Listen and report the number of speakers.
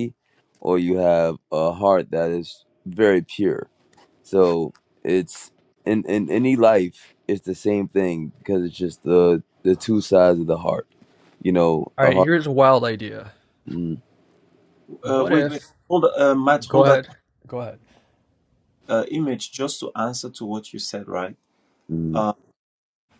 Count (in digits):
3